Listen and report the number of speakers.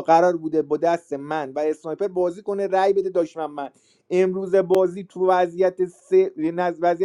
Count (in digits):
1